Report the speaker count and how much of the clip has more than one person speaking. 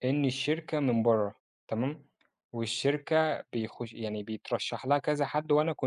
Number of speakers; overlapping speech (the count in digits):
1, no overlap